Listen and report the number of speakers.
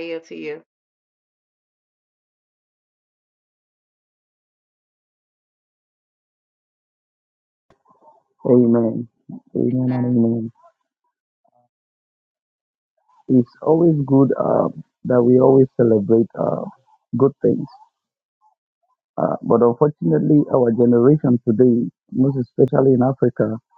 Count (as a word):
two